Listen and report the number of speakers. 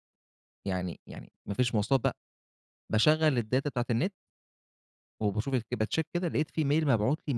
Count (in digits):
1